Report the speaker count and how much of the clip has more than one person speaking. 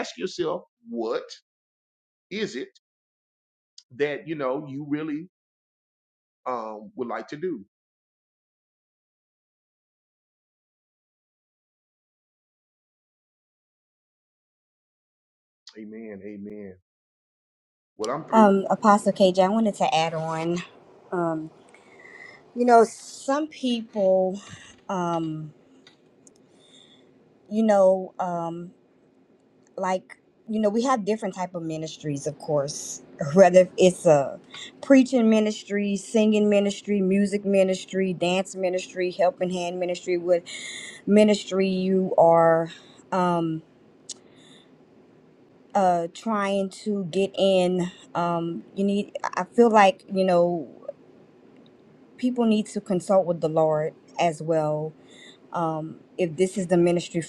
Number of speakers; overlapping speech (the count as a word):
two, under 1%